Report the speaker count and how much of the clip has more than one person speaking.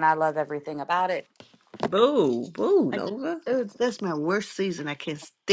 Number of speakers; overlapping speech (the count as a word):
three, about 3%